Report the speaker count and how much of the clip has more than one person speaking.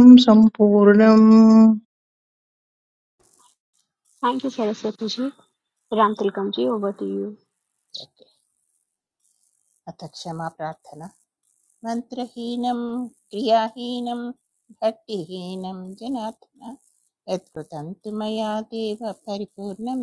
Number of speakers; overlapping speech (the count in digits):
3, no overlap